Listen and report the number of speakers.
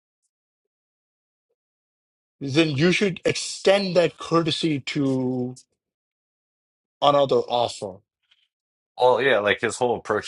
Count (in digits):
2